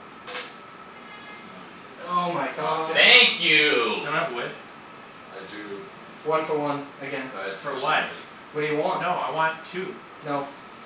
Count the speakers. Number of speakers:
4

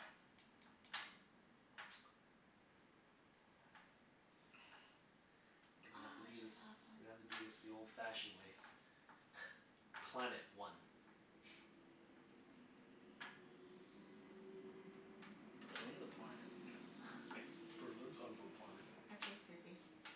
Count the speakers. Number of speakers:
3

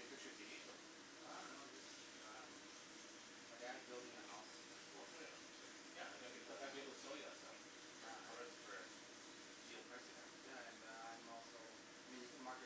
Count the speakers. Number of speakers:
2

